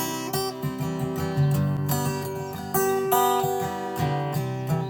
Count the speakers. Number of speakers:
0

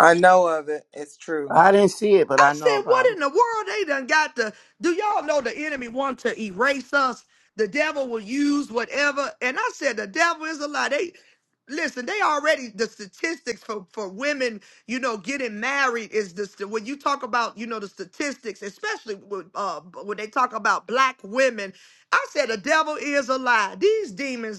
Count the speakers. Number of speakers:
3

